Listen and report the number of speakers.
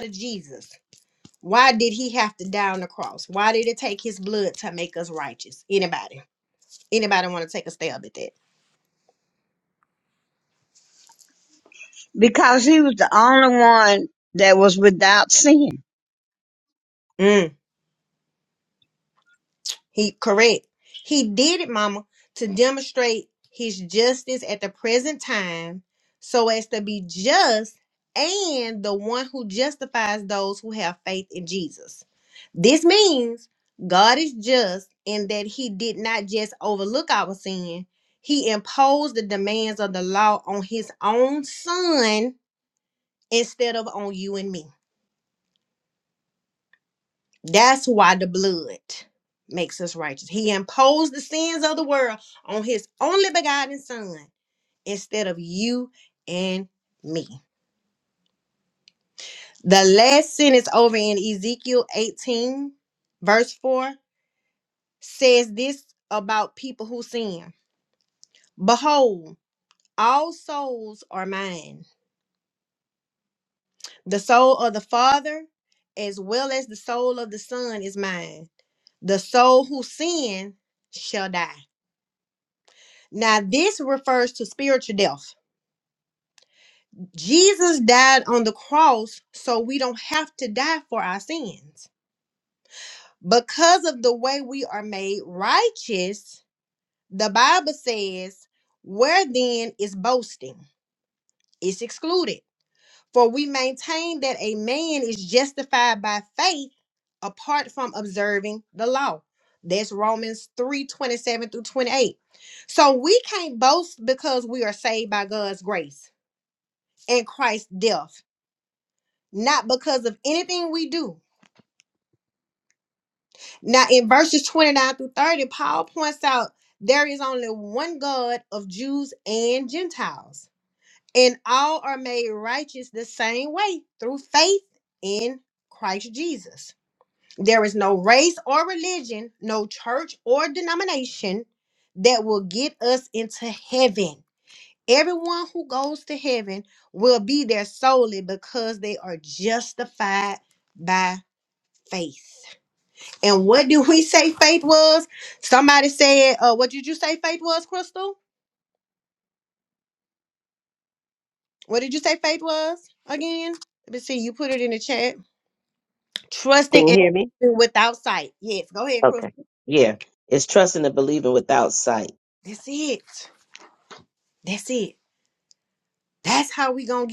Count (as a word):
three